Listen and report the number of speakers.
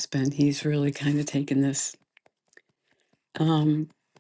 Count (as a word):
one